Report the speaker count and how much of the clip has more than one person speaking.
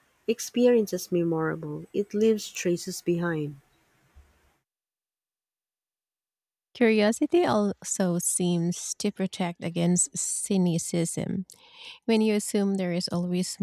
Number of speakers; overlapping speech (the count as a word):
two, no overlap